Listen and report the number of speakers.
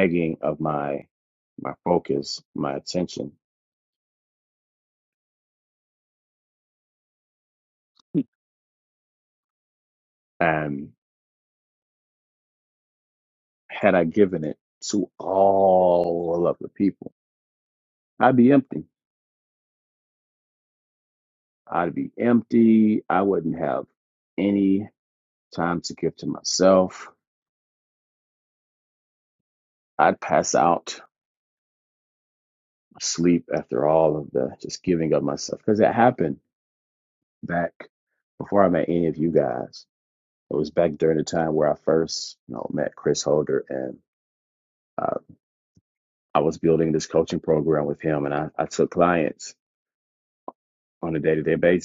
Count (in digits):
1